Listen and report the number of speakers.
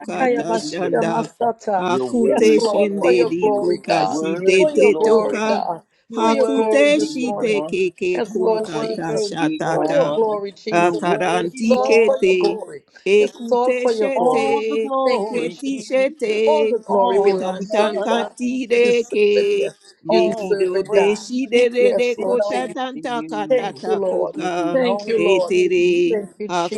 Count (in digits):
3